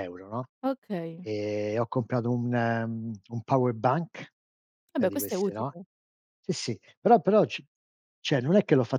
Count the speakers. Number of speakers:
two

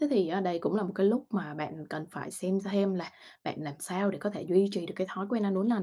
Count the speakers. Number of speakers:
one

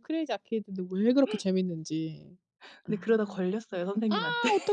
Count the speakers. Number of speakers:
two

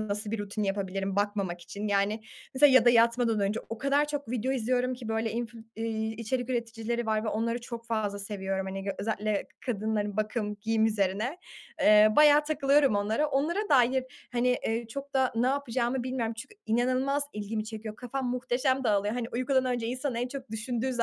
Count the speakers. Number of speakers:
one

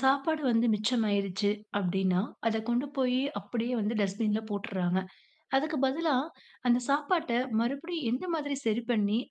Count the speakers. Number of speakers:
one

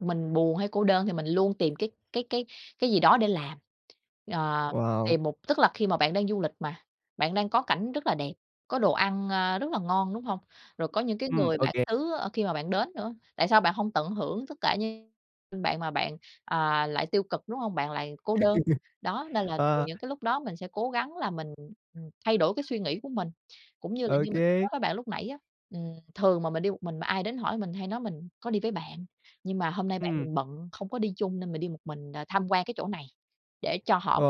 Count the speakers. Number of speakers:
two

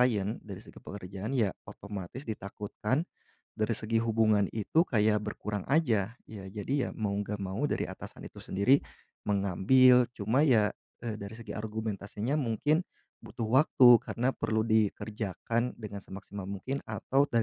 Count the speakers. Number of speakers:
one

